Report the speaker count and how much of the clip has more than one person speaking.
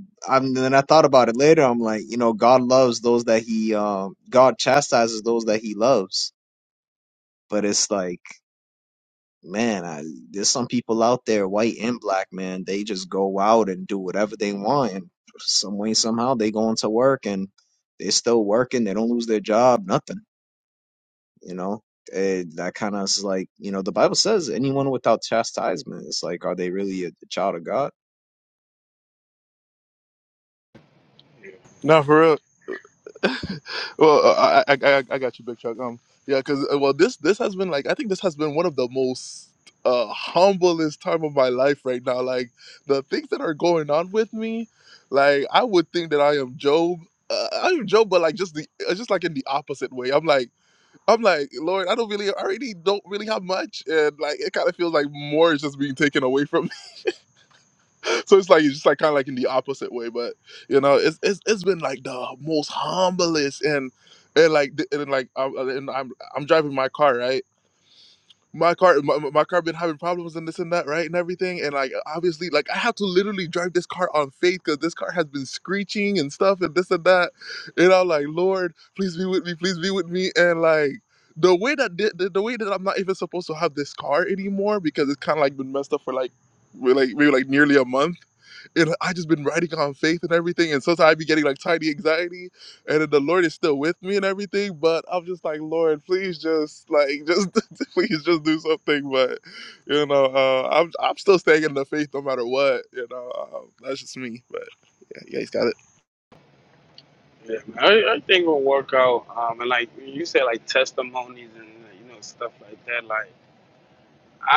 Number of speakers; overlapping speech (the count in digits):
3, no overlap